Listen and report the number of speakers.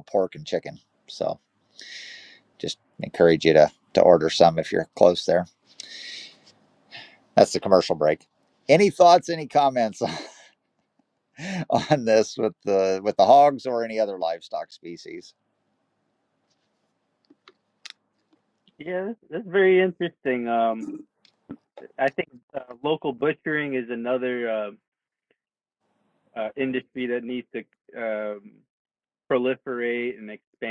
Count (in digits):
2